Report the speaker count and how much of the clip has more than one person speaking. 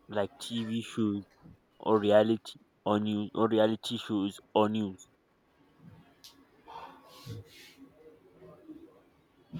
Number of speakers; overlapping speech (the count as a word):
one, no overlap